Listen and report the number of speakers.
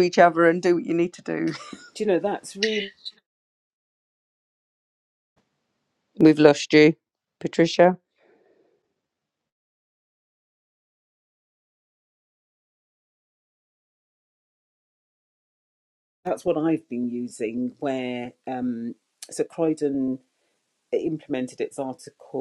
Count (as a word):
two